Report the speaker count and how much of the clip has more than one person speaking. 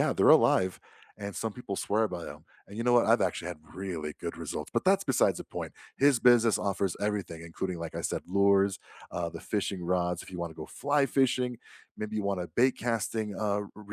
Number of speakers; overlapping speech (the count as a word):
one, no overlap